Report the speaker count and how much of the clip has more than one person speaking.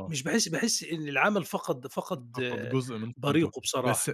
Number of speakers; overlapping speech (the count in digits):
2, about 14%